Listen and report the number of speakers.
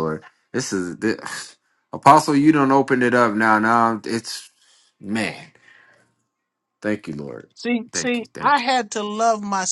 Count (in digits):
2